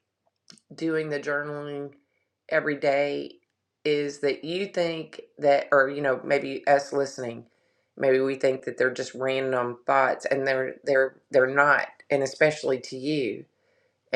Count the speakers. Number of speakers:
1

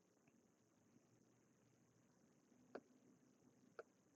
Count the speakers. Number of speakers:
0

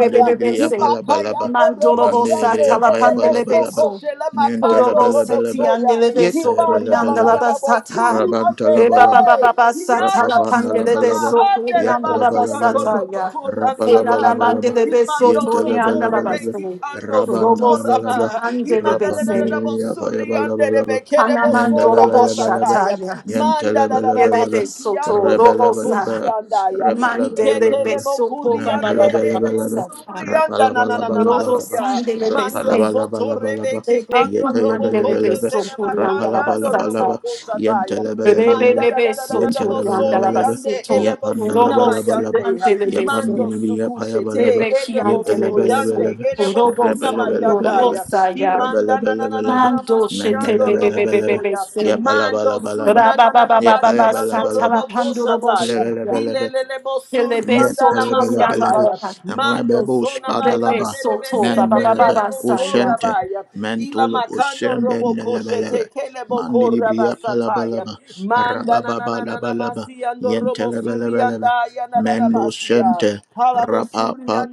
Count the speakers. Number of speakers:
3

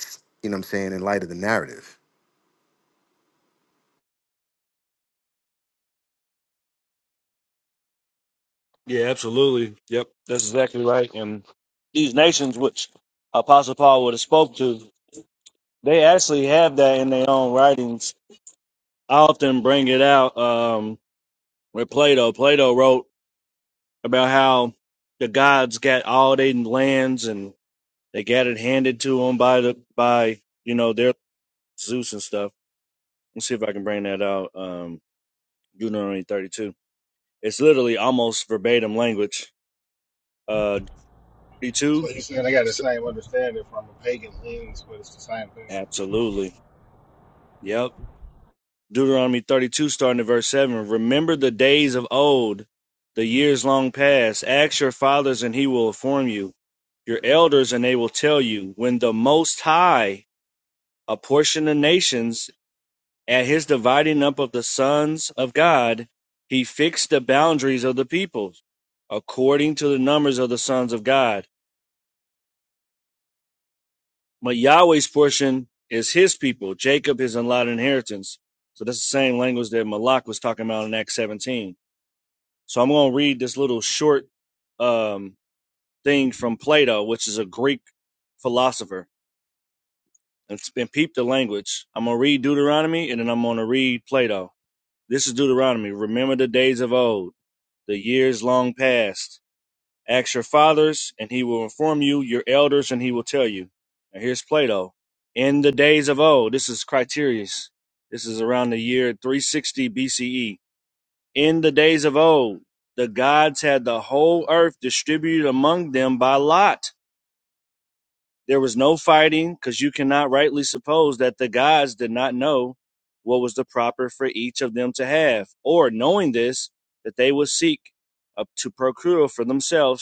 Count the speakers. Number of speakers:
3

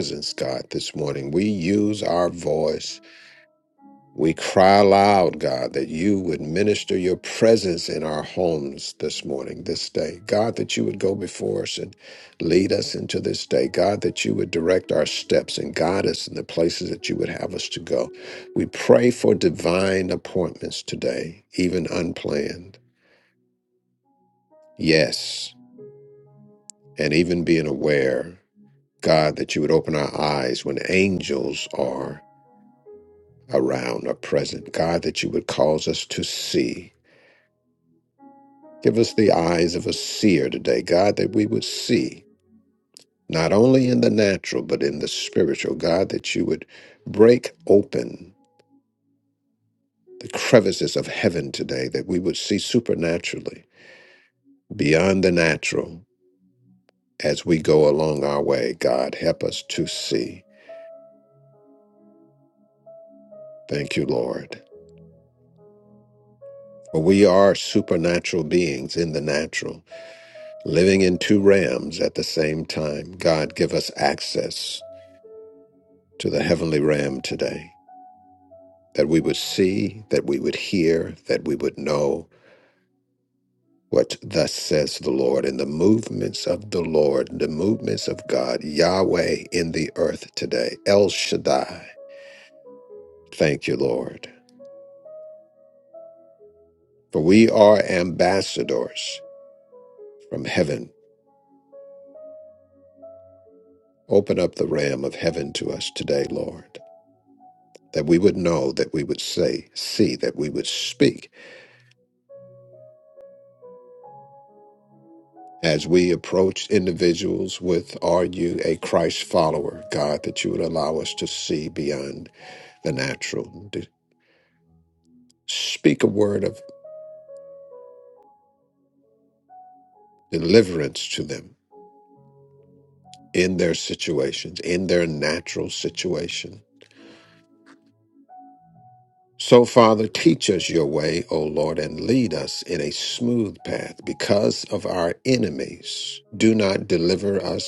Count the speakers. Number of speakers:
1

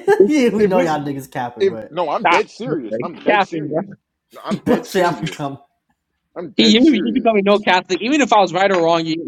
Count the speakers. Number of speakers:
3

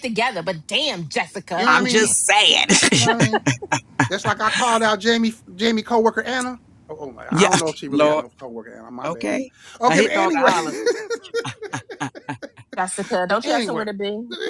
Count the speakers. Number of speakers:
3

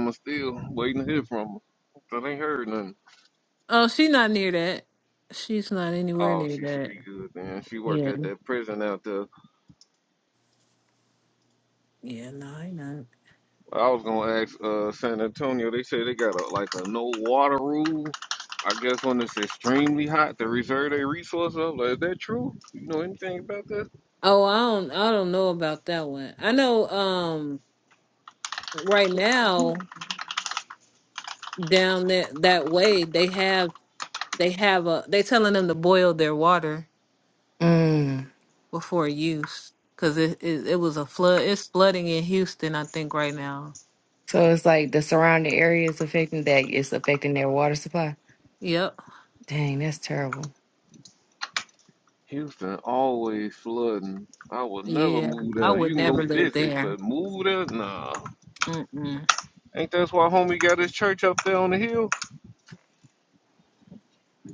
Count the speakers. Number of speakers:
3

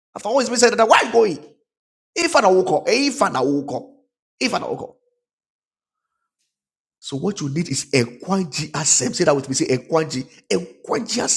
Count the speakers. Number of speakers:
1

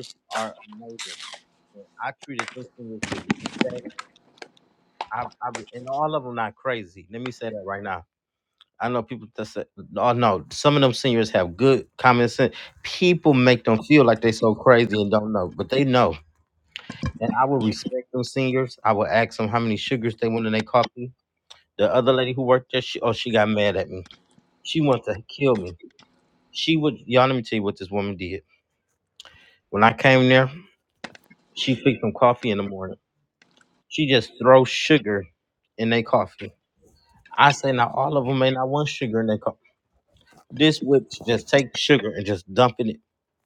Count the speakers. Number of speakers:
1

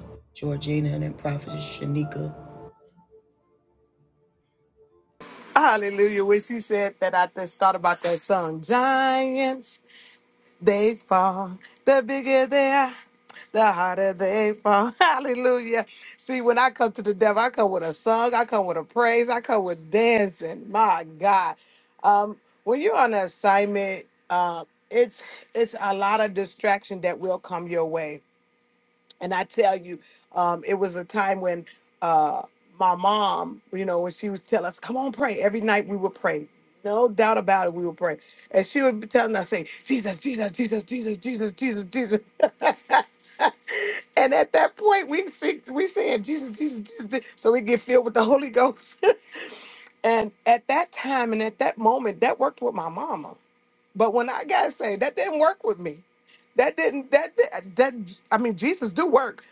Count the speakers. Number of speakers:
2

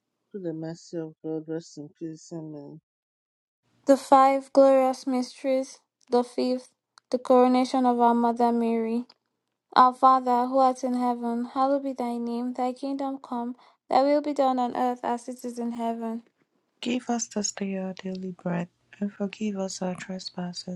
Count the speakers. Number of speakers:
3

